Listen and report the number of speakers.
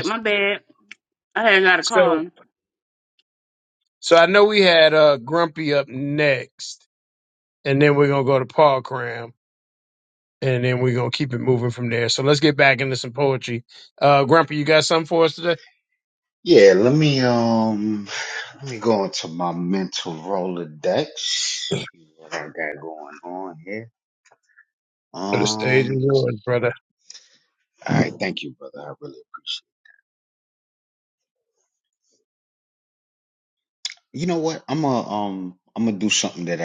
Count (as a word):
three